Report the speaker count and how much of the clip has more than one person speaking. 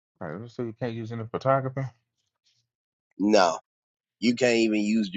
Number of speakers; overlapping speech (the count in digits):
2, no overlap